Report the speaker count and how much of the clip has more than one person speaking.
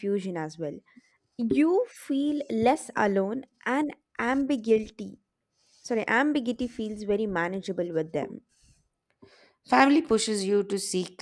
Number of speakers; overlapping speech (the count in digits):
2, no overlap